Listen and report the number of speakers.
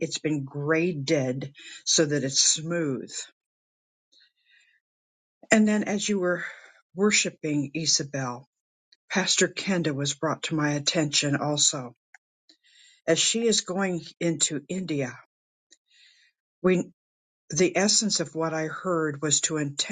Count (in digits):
1